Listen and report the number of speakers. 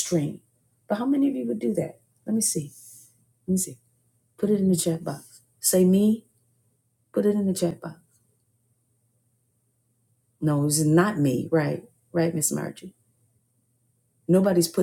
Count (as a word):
one